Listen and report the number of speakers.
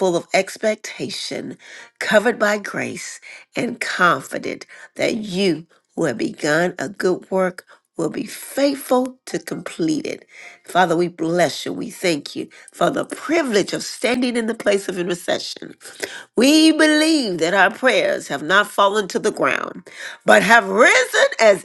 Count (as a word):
one